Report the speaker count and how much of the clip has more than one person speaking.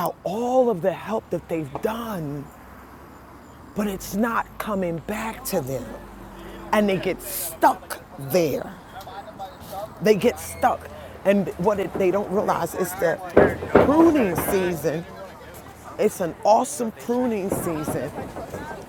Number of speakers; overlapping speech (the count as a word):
one, no overlap